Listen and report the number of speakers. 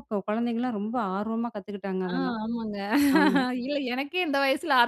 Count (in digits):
2